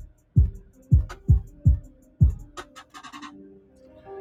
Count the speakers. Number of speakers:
0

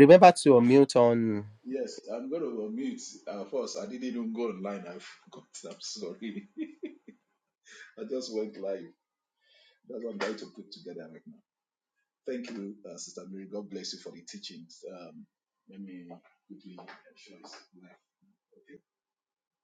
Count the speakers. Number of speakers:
2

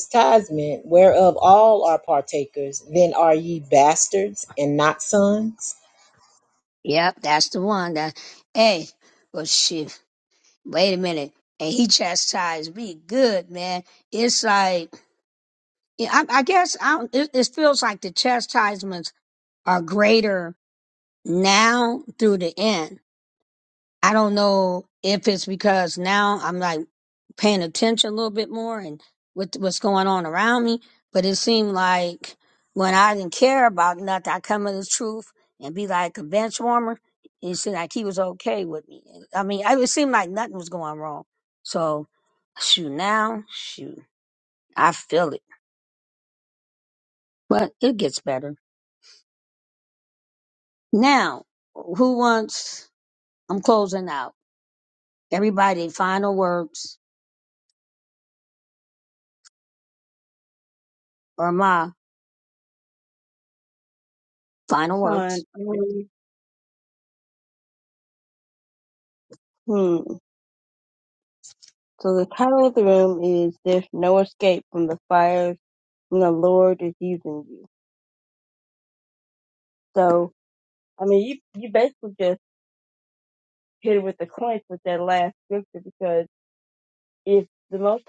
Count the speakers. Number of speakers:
3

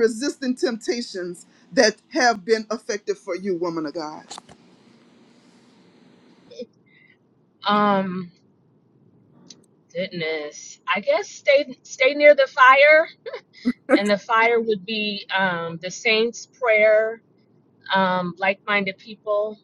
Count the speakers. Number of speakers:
2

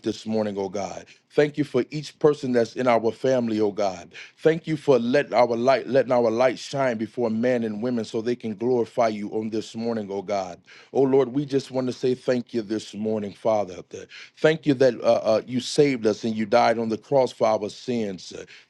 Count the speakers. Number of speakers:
1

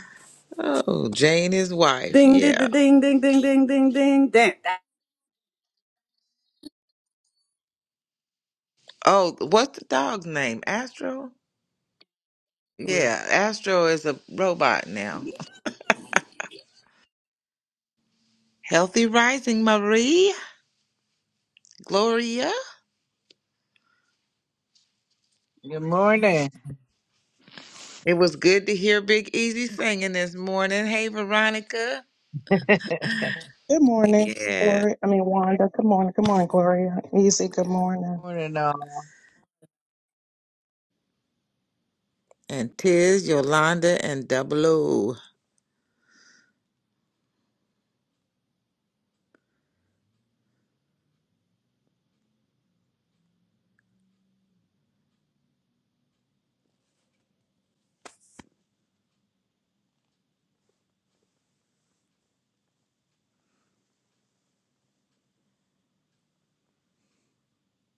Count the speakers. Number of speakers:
4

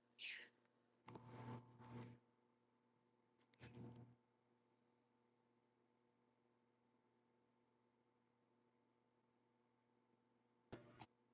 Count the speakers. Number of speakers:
0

